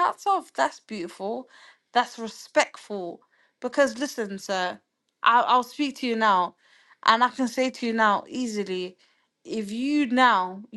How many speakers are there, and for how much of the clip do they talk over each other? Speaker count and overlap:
one, no overlap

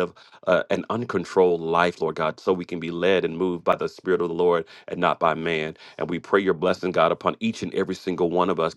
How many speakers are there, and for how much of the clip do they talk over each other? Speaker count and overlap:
one, no overlap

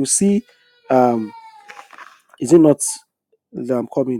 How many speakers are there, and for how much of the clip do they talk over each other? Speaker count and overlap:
one, no overlap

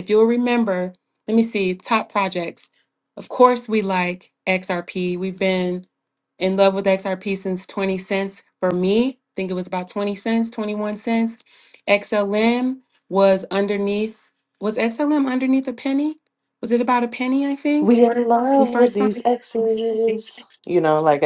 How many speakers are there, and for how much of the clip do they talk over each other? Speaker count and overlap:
two, about 3%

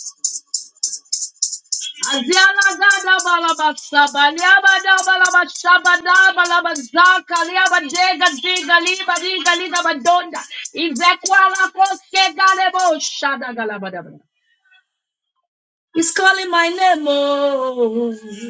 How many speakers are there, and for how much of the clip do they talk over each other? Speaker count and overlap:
one, no overlap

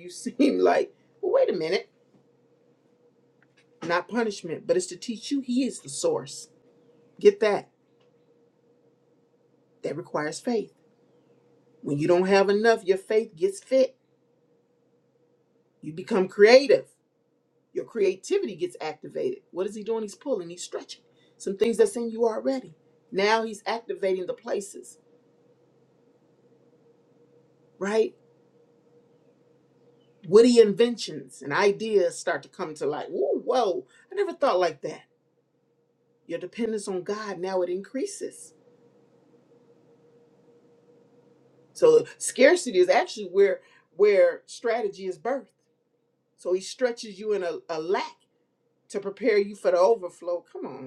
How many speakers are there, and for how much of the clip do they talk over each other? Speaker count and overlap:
one, no overlap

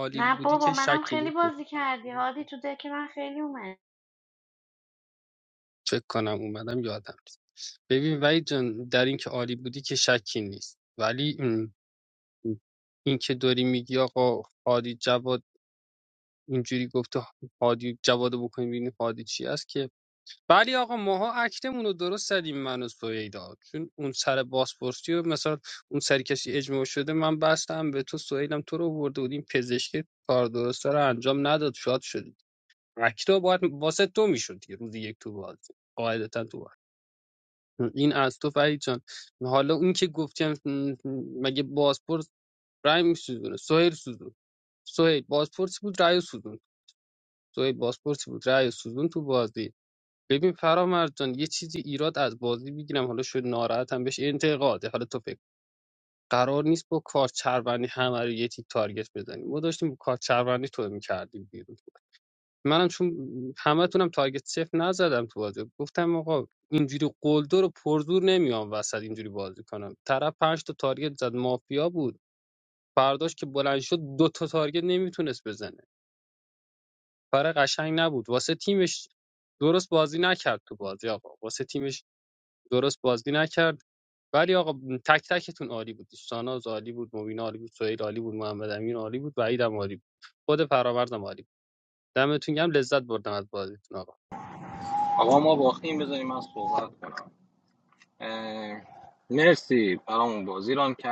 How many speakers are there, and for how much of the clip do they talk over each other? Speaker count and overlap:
three, about 1%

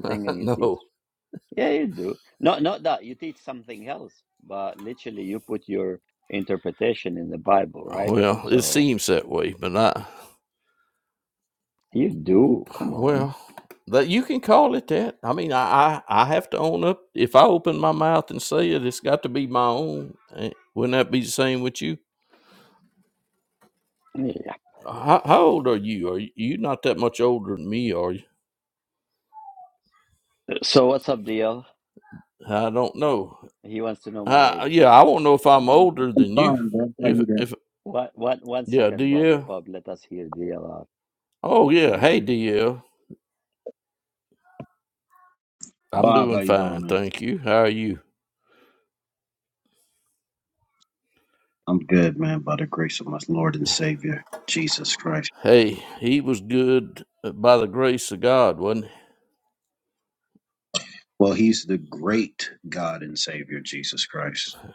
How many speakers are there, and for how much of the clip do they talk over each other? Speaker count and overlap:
three, about 7%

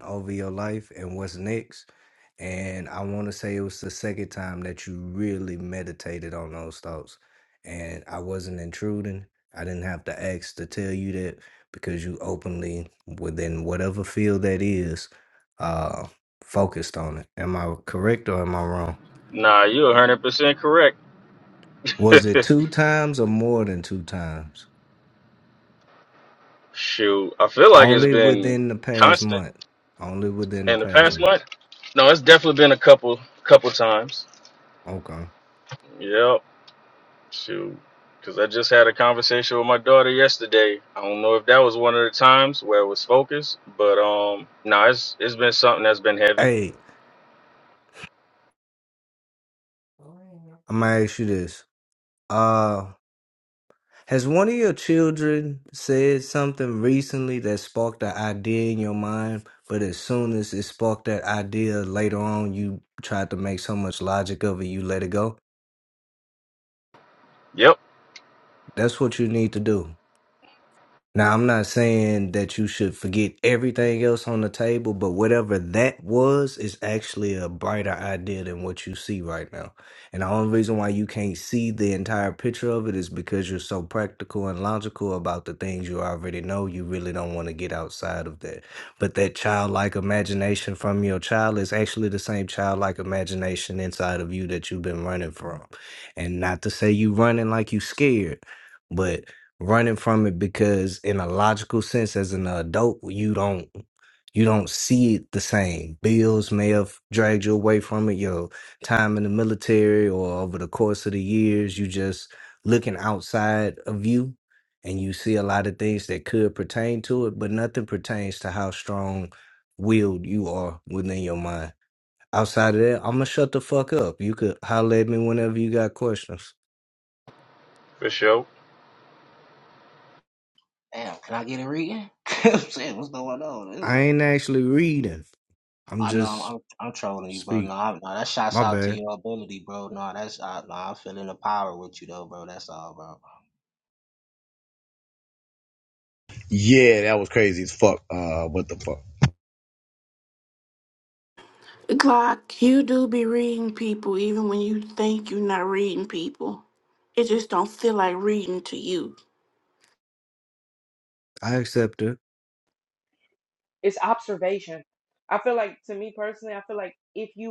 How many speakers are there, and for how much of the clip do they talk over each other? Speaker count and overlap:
six, about 2%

